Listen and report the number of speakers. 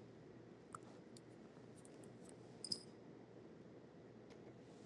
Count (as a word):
zero